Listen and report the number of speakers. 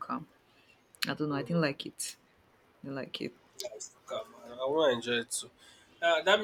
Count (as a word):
two